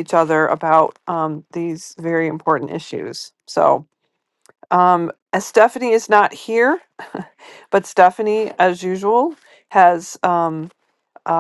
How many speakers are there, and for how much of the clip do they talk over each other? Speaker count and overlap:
1, no overlap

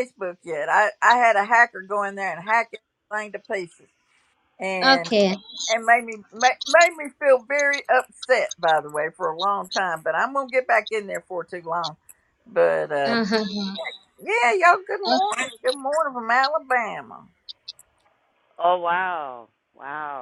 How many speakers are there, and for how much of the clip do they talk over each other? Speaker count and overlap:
3, about 2%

